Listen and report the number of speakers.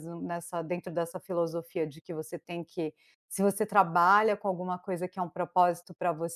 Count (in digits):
1